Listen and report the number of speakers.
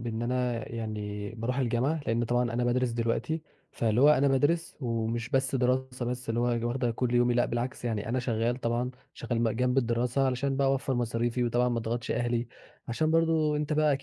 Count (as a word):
one